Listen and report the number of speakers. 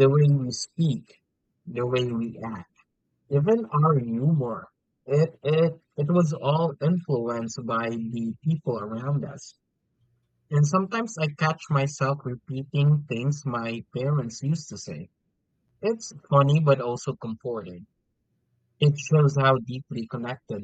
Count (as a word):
one